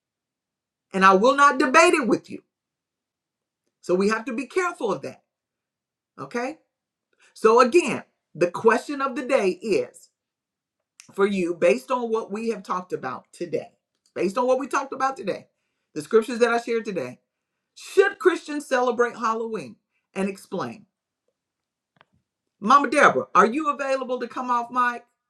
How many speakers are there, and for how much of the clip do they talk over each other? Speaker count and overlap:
1, no overlap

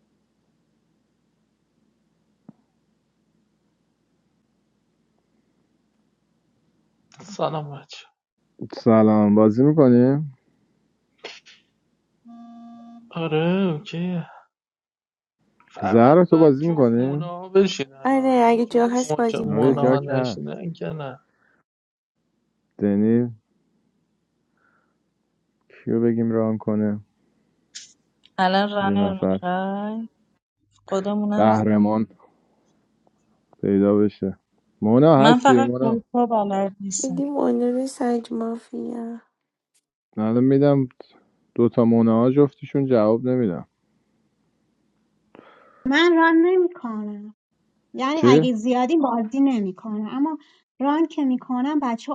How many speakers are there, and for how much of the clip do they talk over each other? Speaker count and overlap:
5, about 11%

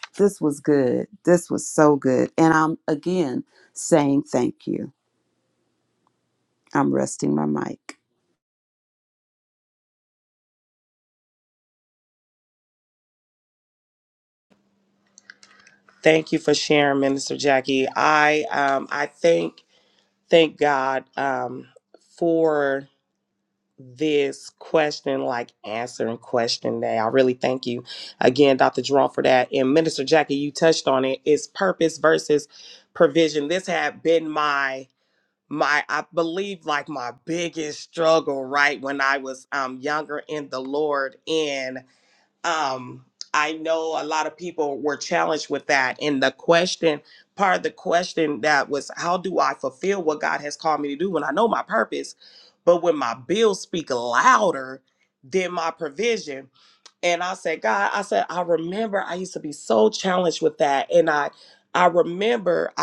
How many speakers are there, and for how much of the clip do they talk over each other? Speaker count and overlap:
2, no overlap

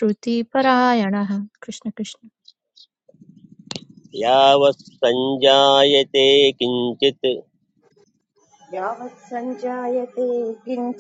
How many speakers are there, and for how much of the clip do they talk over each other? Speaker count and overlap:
3, no overlap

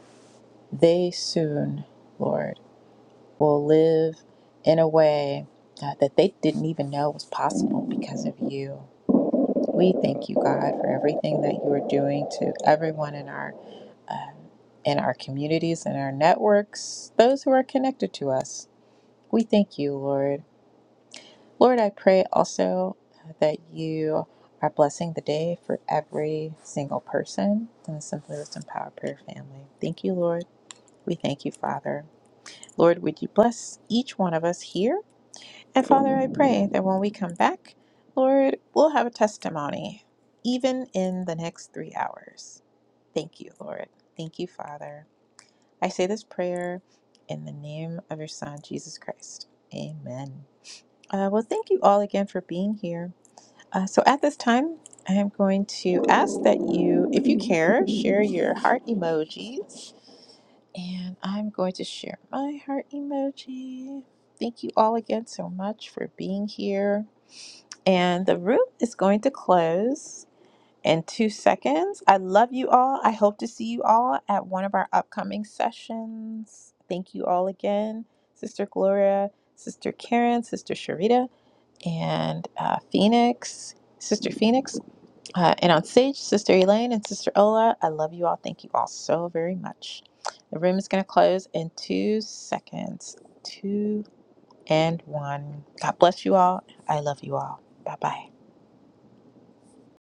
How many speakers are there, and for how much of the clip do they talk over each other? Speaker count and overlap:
1, no overlap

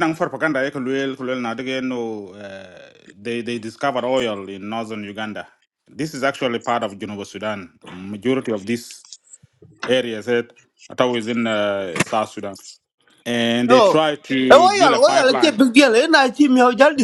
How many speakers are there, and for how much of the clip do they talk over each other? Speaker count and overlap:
2, about 8%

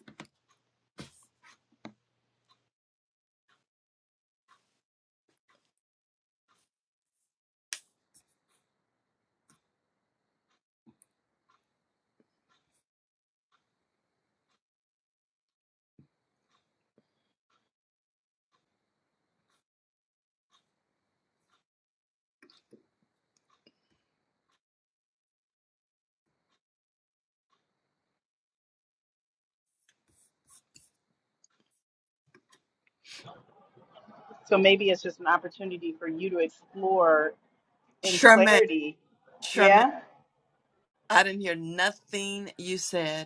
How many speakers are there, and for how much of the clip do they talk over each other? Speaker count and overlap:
2, about 2%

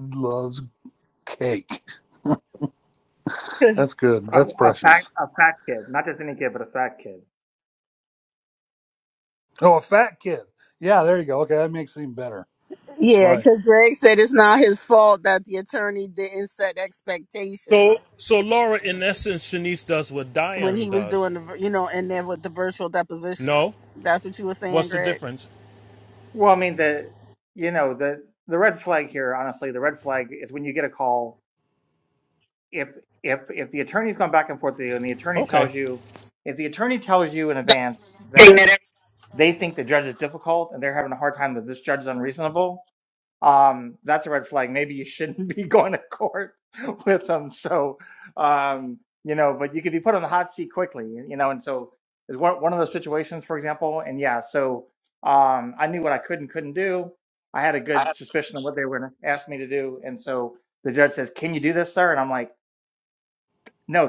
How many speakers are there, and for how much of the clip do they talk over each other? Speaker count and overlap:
4, about 5%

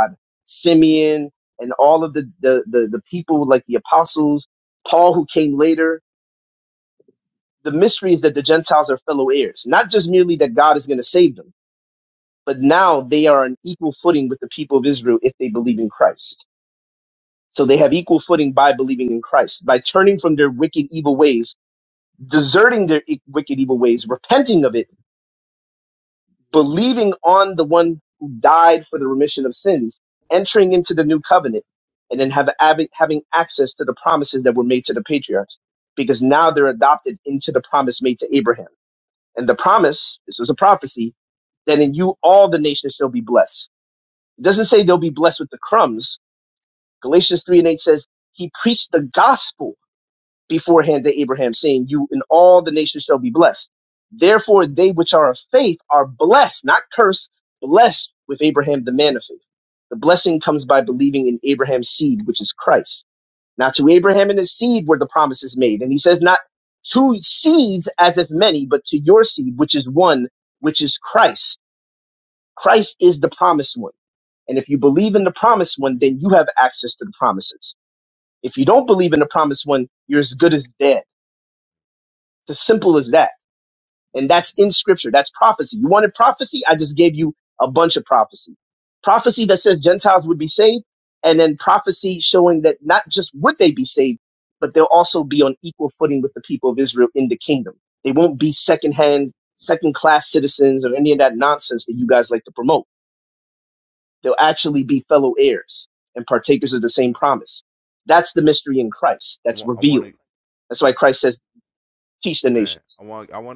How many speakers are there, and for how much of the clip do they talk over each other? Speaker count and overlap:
2, about 1%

